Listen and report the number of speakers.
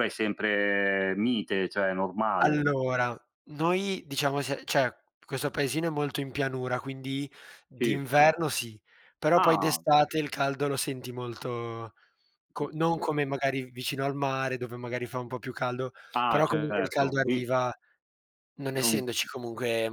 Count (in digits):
2